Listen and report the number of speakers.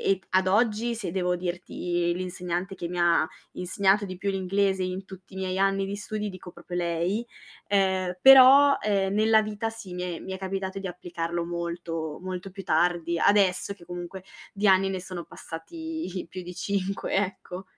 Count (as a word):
one